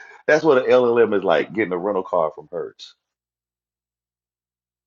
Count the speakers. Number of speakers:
1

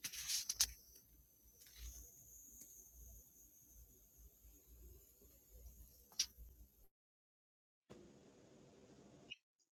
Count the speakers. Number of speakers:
0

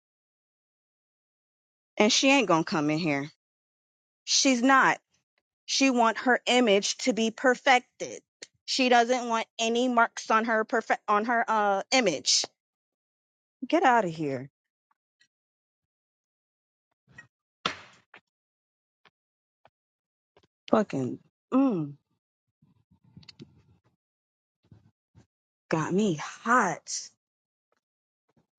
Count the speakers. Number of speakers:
1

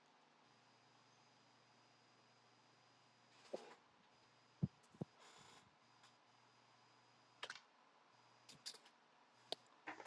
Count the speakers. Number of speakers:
0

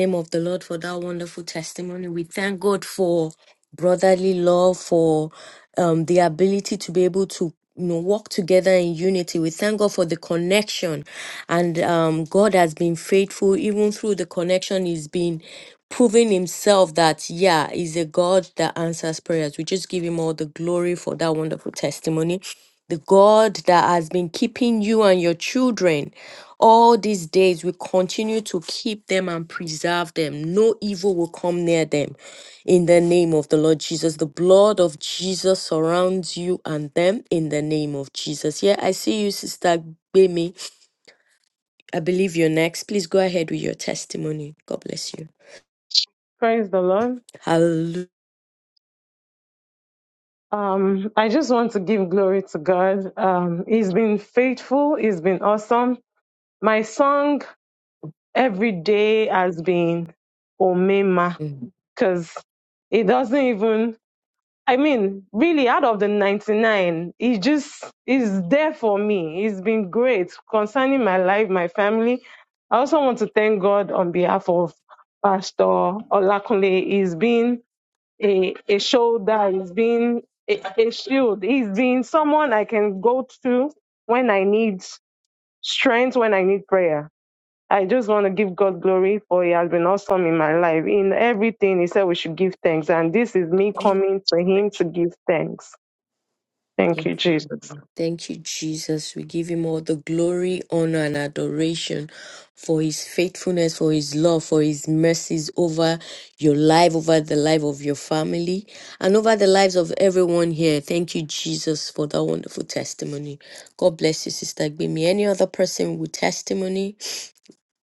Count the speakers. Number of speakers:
2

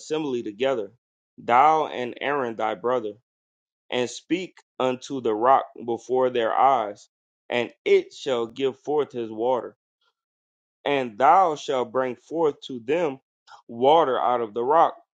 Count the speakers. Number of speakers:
1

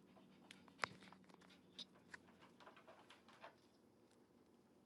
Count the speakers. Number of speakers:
0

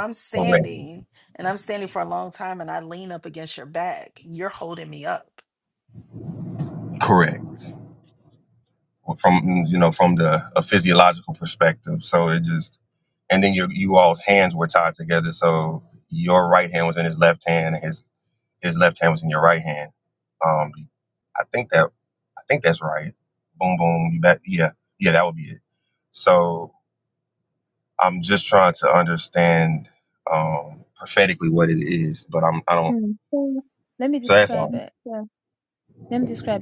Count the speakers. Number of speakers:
3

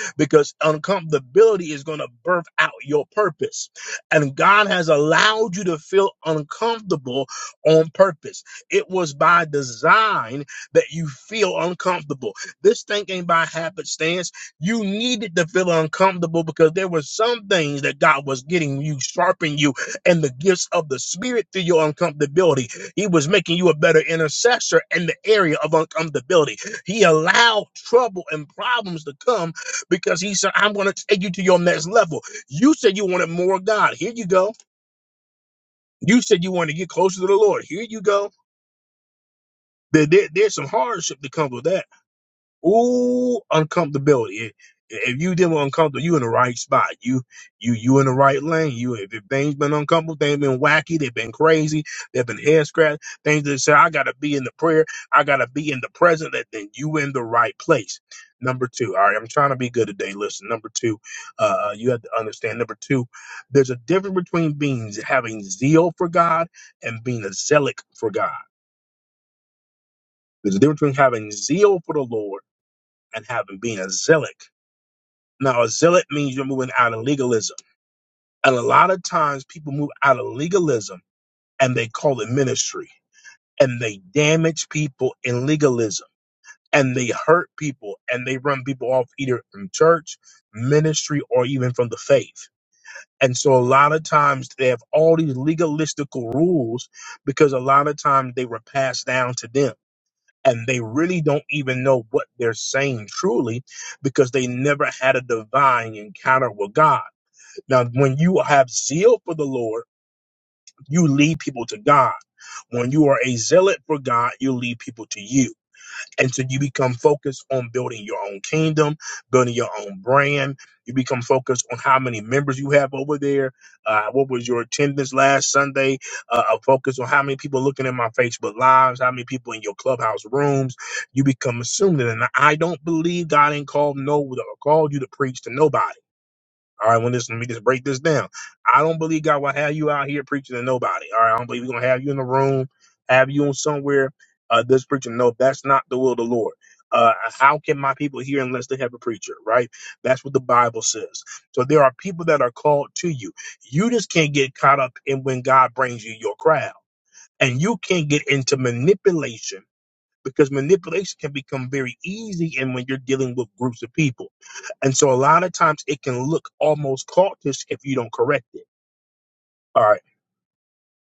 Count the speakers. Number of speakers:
1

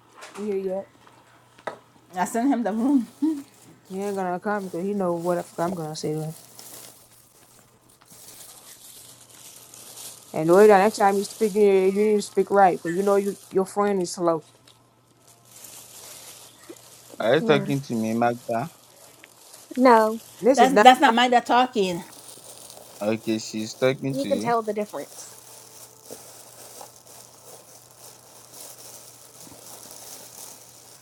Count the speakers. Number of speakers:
4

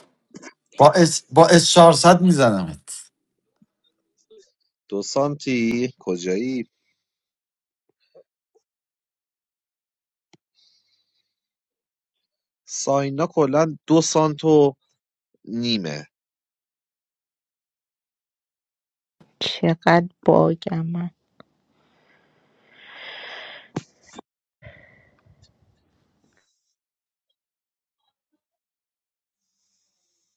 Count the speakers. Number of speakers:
3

